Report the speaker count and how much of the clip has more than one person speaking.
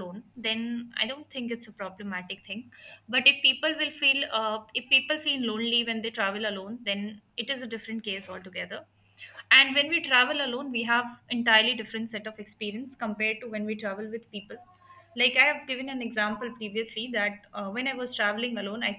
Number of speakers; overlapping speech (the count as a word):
one, no overlap